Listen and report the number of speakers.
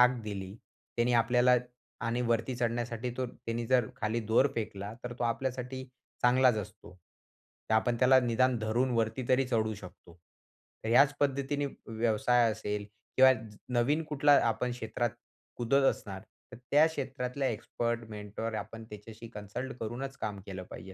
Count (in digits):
1